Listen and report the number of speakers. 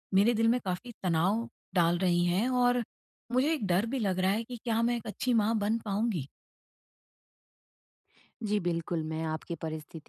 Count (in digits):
2